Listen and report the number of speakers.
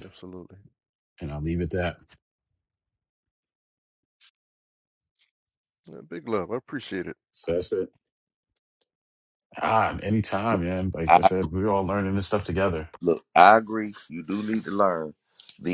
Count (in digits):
3